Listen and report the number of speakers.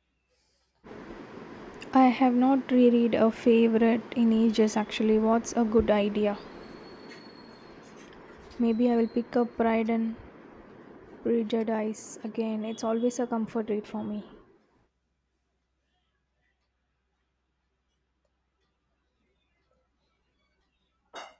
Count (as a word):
one